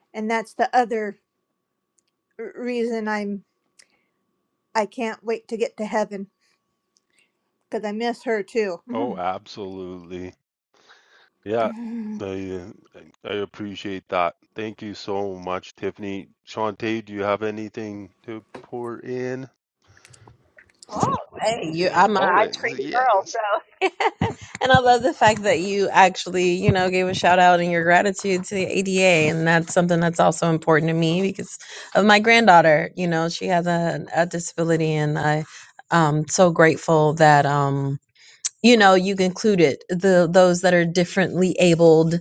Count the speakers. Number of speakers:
3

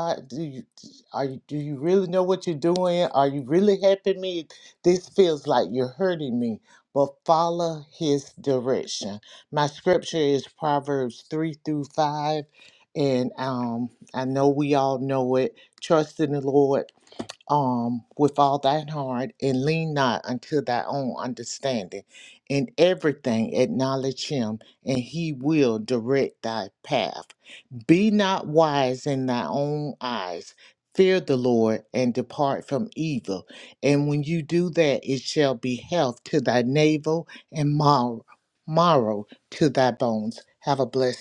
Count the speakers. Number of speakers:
1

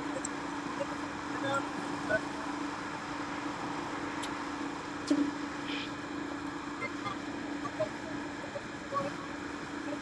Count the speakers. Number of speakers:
0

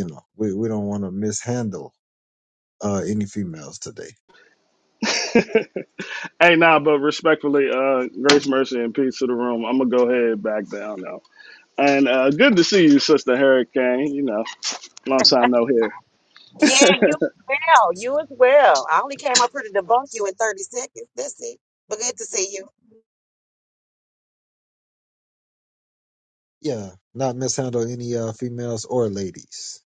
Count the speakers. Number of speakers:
3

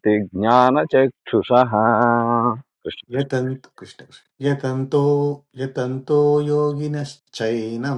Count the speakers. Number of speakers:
2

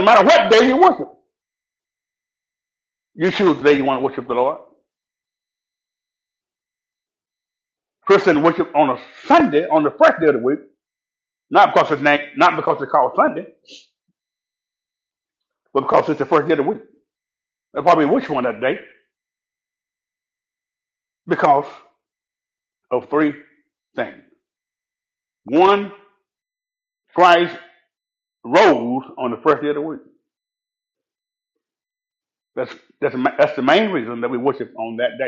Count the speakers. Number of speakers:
1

